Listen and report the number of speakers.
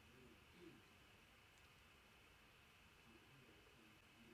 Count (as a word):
zero